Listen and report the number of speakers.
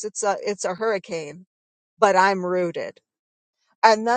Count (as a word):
one